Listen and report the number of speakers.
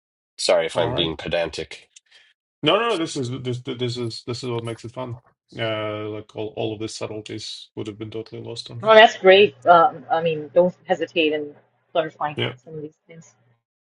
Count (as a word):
three